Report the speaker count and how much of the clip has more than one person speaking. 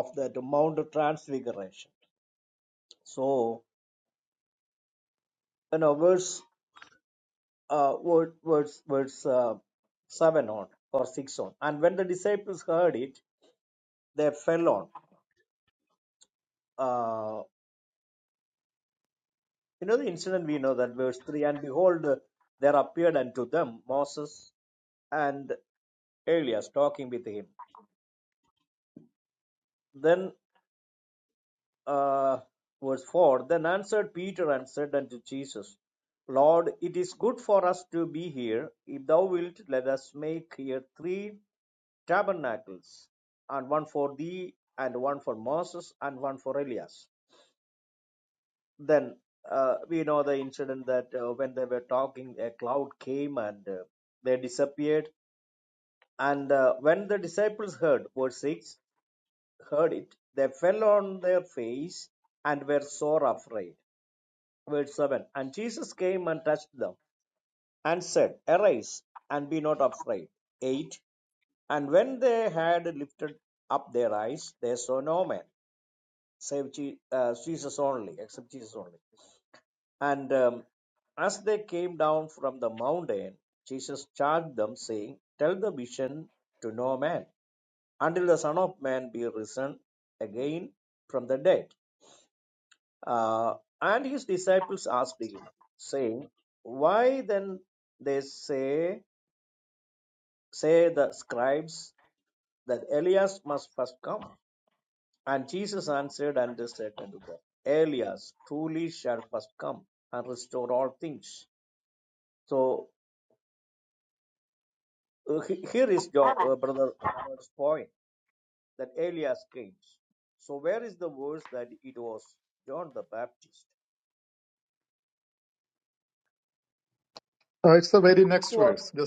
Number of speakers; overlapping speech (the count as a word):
two, under 1%